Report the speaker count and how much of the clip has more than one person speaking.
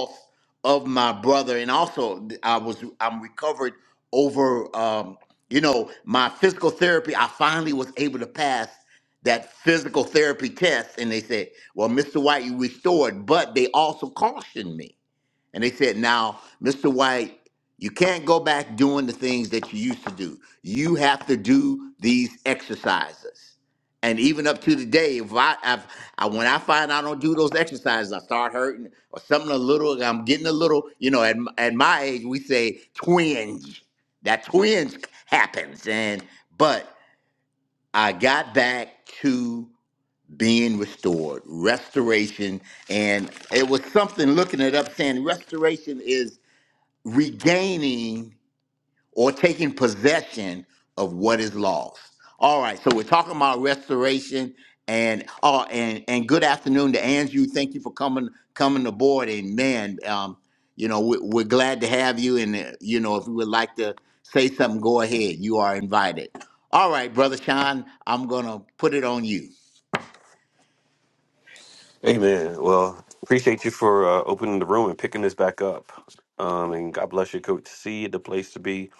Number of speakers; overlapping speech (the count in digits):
2, no overlap